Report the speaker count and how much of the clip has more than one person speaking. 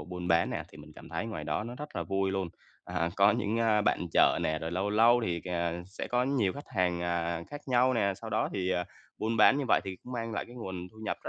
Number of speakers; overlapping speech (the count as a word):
one, no overlap